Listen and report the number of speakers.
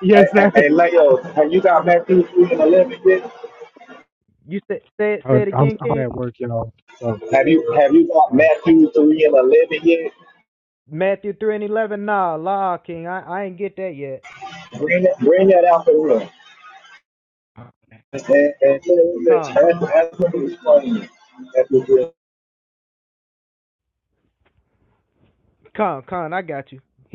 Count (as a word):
three